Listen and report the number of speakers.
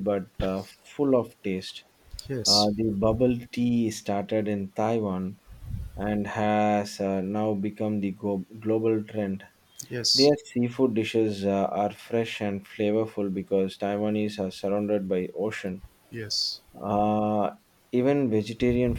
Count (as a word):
two